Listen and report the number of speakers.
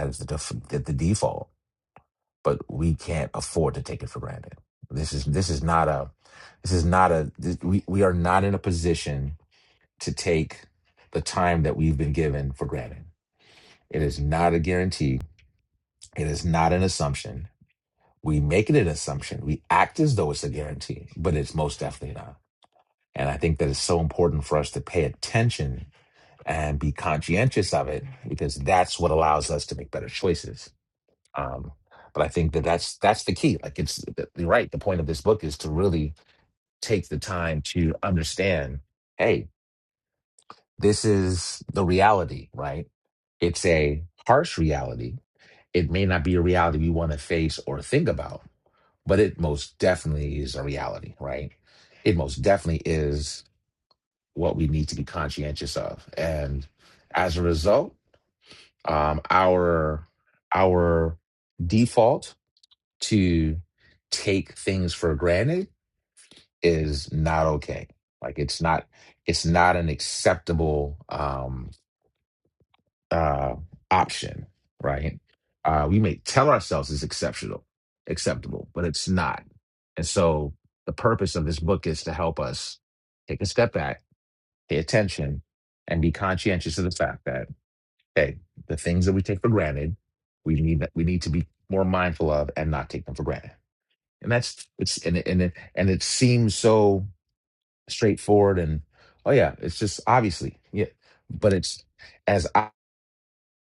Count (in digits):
1